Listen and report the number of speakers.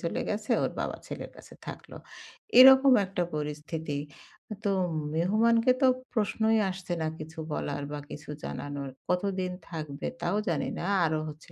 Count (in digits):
1